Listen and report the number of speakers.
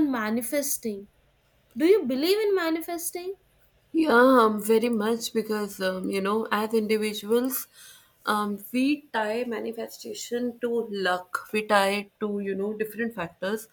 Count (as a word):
two